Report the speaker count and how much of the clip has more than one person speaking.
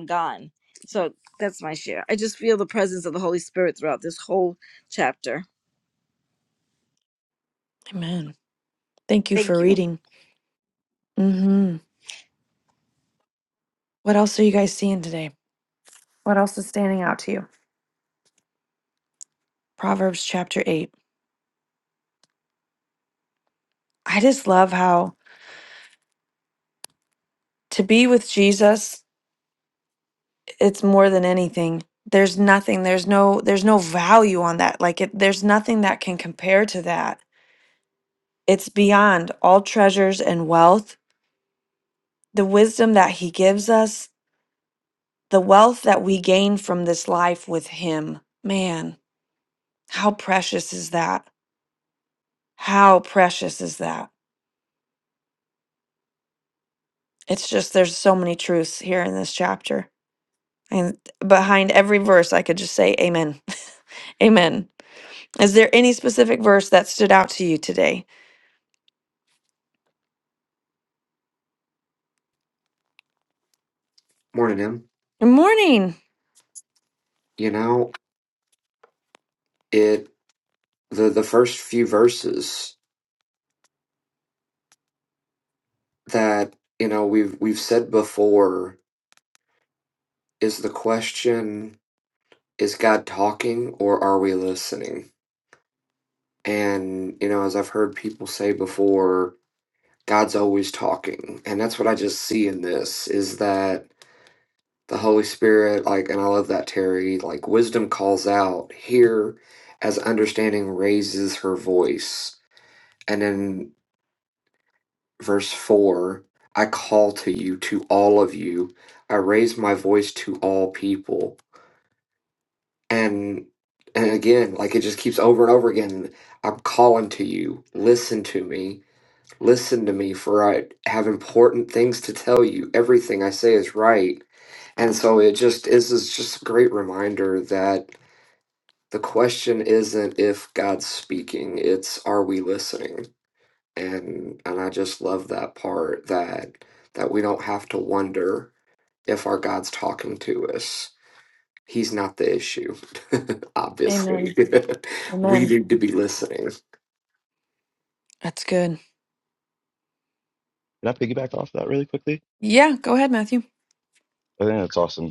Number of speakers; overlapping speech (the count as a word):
four, about 1%